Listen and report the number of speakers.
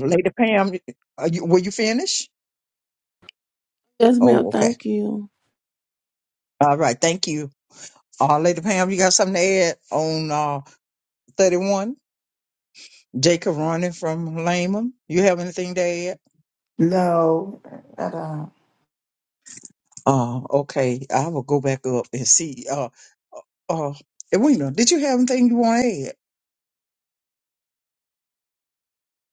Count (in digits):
3